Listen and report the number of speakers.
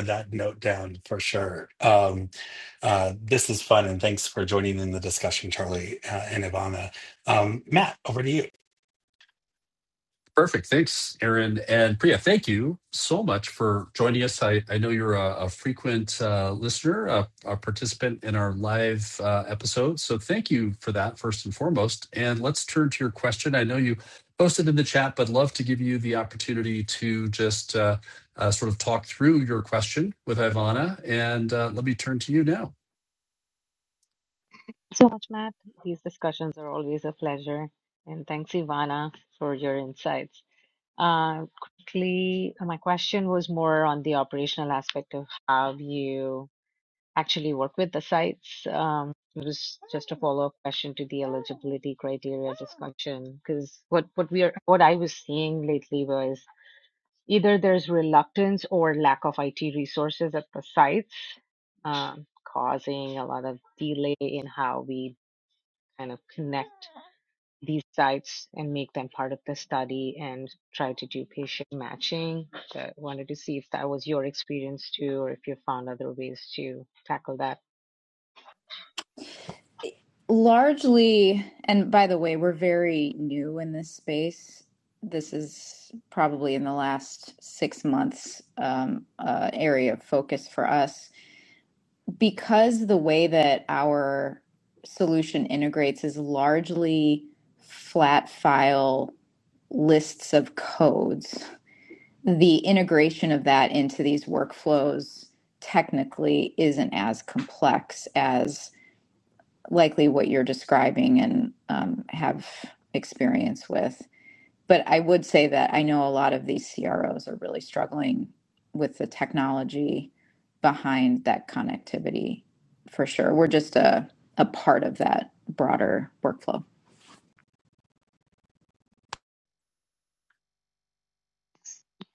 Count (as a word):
four